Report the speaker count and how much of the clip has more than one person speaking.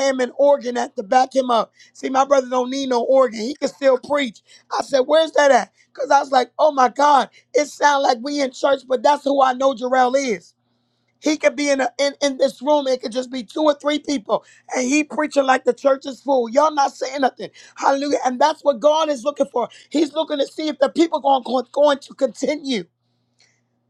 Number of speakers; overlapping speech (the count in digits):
1, no overlap